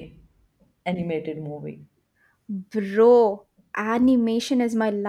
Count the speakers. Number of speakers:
2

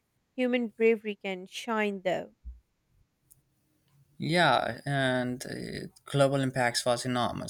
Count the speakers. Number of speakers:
2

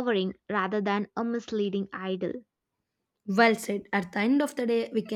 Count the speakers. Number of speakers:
2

